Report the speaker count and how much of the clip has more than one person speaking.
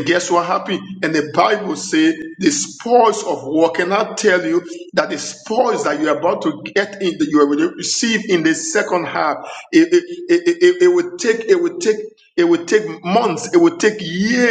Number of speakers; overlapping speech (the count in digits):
1, no overlap